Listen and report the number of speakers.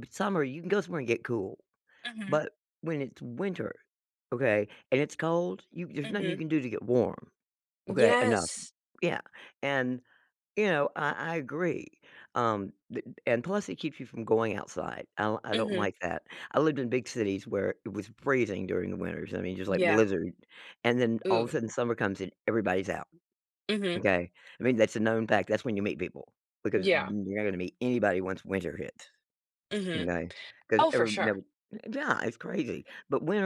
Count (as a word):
two